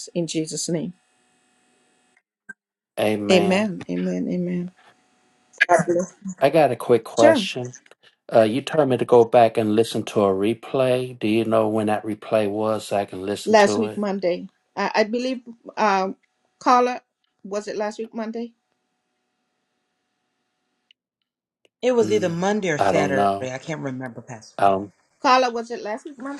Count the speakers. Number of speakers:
three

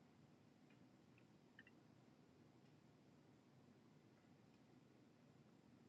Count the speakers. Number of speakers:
zero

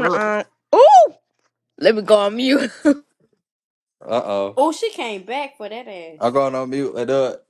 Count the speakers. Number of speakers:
three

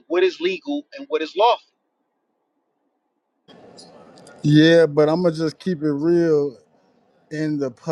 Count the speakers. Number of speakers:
two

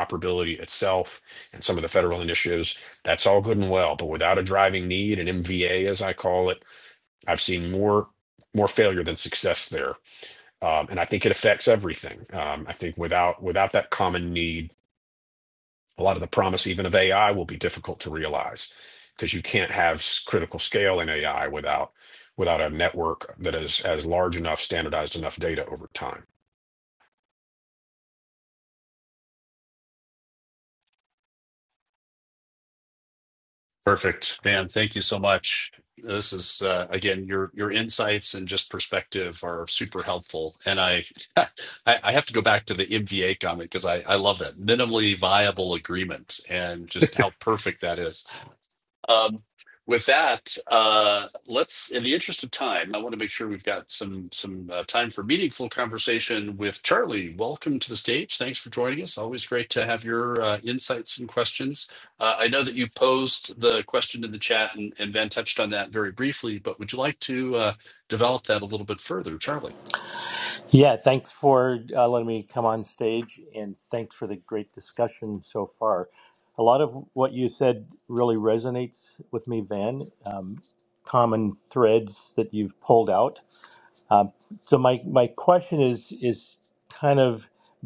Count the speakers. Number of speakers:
three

